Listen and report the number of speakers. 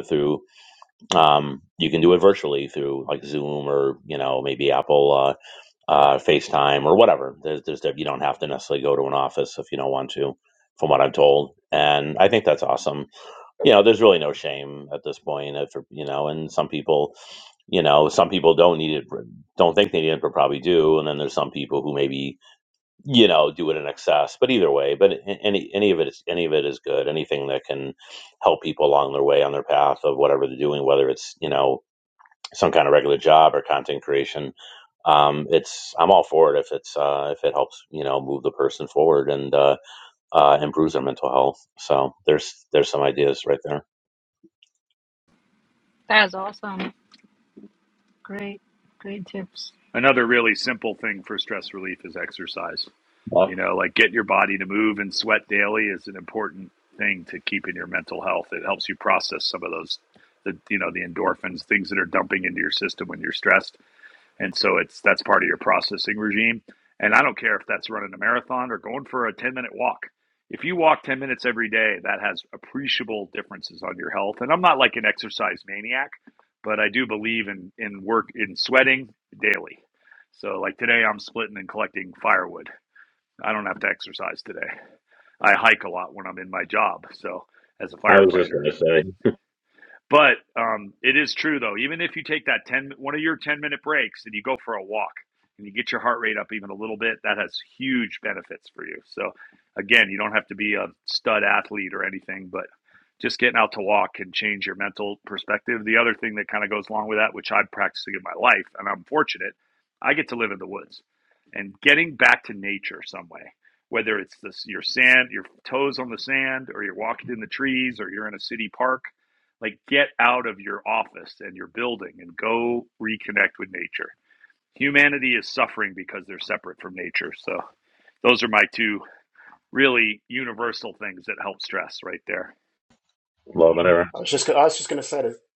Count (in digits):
4